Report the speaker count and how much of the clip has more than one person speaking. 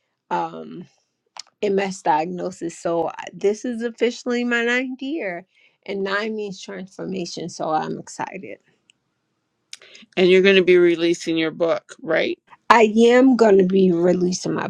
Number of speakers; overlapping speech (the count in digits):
2, no overlap